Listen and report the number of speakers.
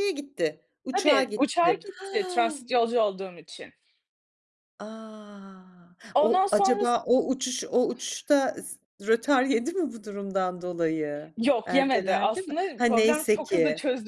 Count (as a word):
two